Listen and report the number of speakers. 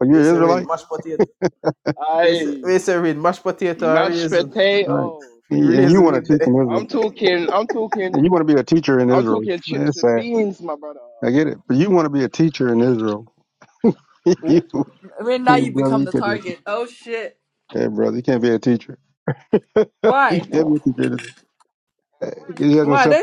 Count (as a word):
four